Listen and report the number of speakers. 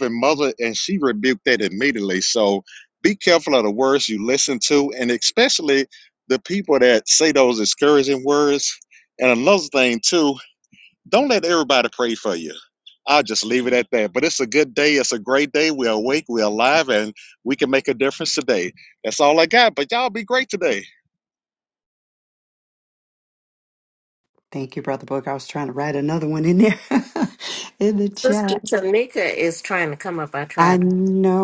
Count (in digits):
3